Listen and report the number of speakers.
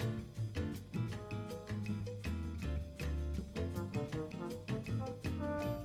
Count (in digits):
0